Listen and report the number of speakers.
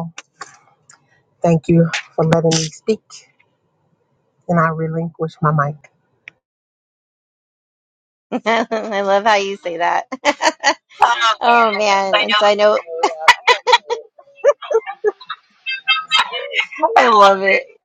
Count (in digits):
2